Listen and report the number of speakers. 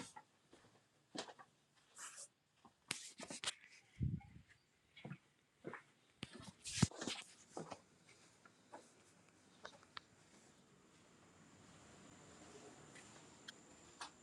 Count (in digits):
0